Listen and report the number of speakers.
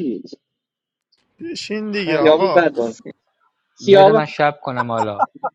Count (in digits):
3